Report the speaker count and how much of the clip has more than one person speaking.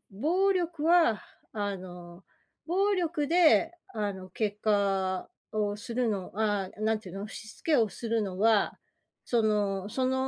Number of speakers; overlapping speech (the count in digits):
1, no overlap